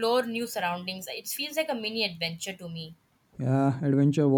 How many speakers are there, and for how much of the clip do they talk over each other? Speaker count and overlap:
2, no overlap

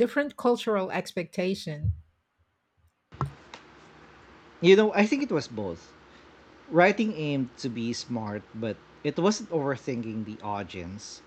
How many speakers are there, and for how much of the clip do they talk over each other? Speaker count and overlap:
2, no overlap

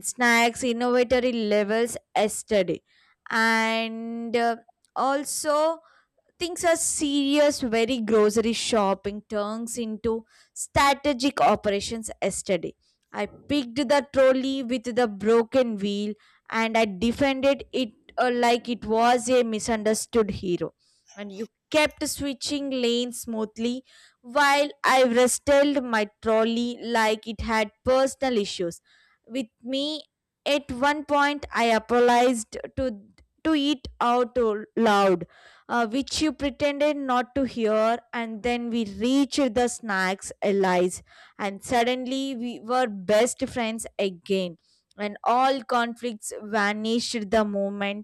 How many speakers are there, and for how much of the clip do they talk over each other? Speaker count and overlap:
1, no overlap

